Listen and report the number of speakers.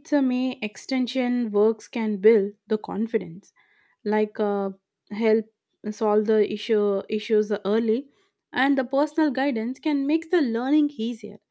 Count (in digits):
1